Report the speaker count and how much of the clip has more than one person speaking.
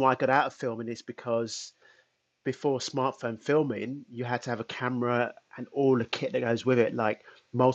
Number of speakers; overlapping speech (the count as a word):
one, no overlap